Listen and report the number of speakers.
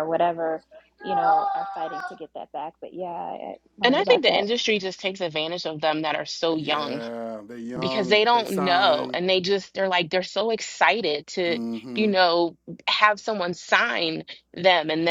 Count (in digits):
3